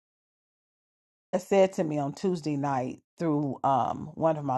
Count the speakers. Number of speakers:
1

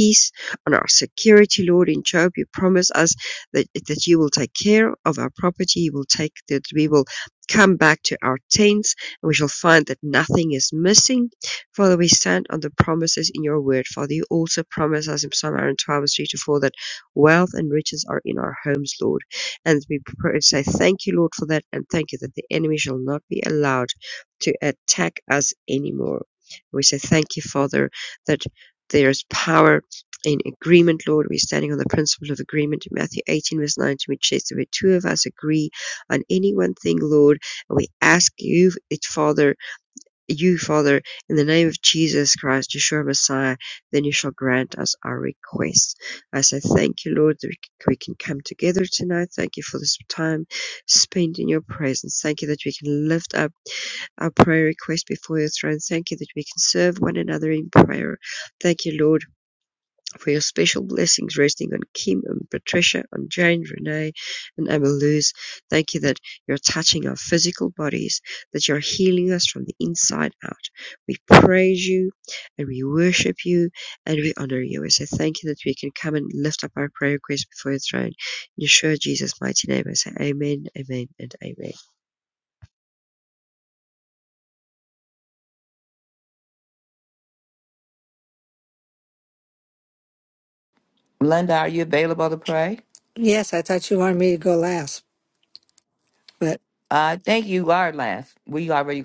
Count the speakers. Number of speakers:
3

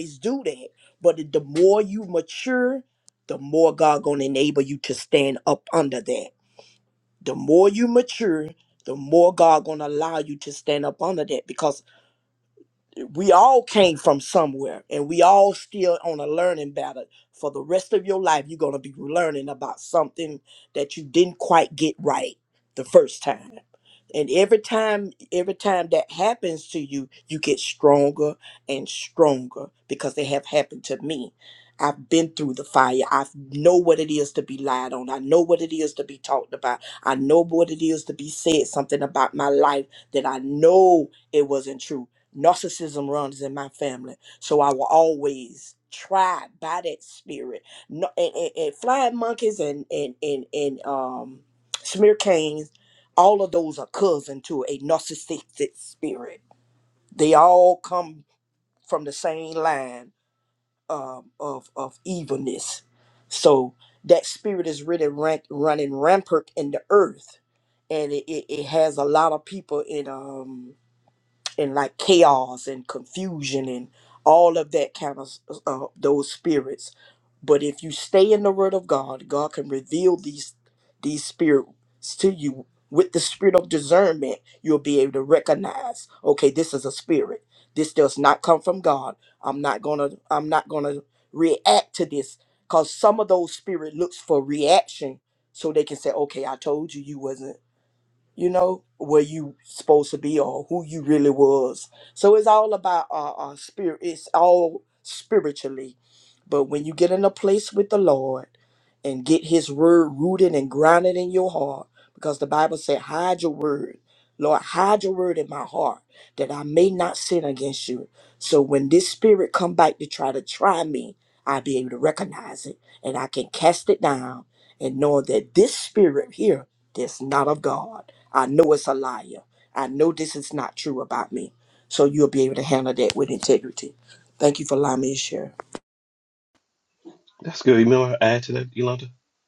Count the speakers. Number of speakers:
2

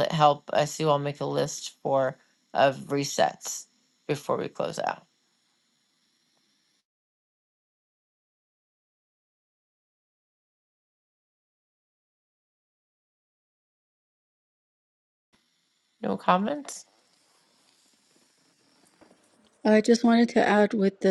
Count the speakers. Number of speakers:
2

